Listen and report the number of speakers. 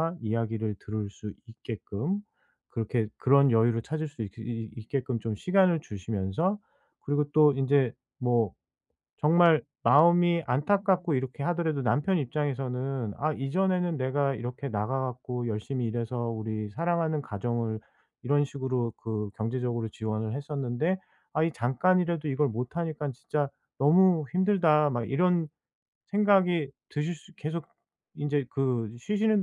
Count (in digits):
1